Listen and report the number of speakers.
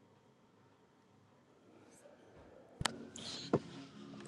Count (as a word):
zero